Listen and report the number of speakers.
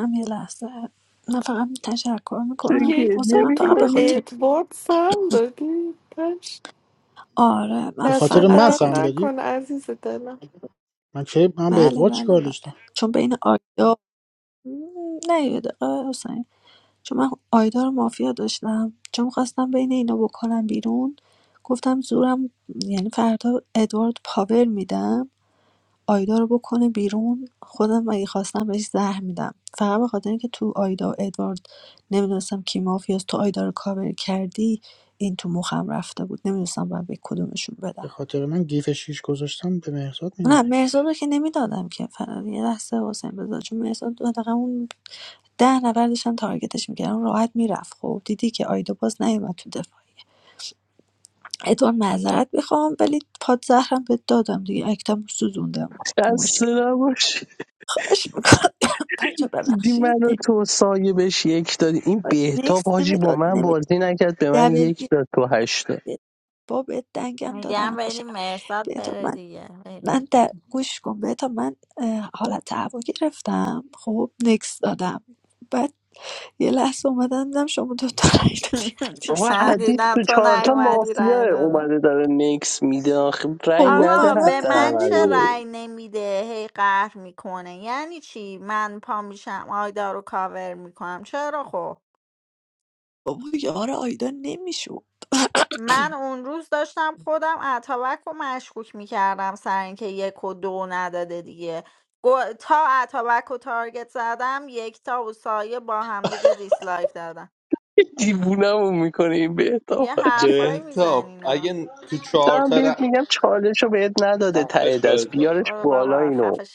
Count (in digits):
6